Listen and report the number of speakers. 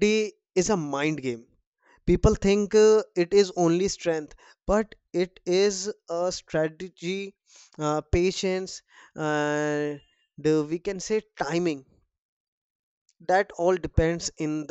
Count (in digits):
1